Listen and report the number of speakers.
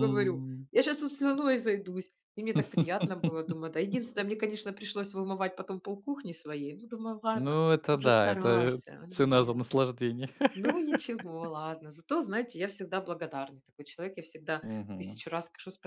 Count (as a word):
two